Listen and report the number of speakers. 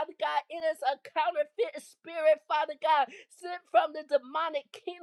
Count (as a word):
one